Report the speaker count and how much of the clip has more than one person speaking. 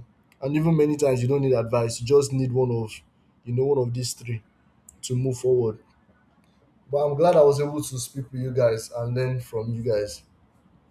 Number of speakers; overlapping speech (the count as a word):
one, no overlap